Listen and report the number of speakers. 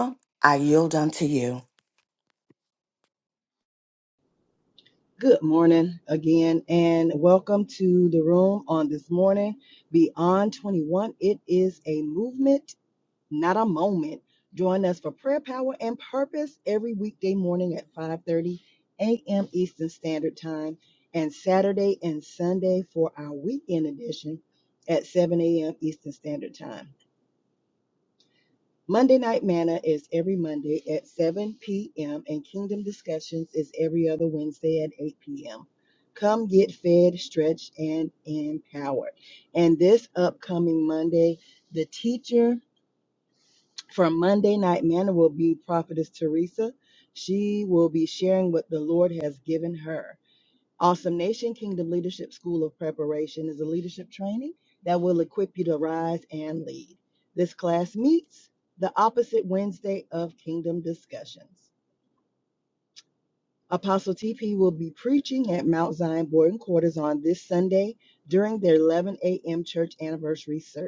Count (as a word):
two